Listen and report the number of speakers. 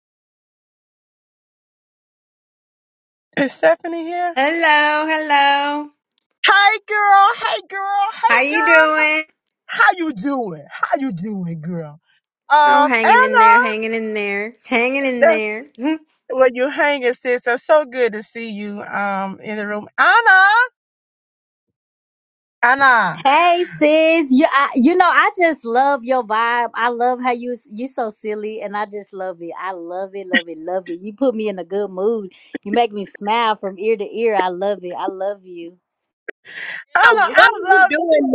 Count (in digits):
4